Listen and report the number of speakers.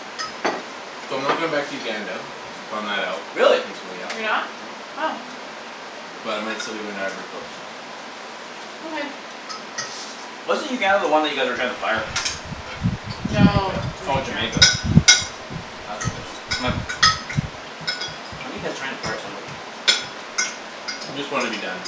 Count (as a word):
three